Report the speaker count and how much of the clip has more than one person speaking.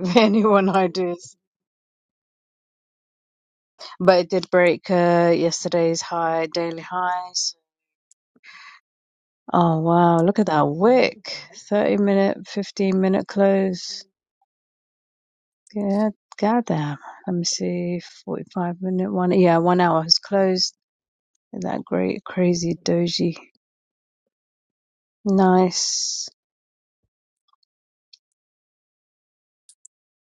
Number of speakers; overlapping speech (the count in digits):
1, no overlap